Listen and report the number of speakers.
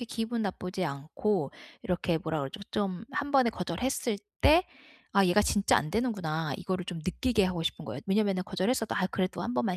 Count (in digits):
1